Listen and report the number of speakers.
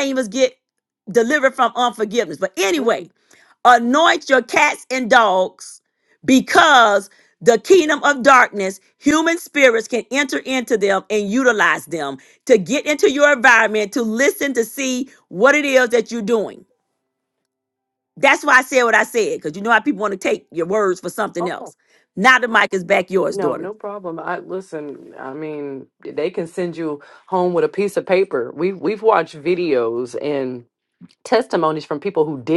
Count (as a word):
two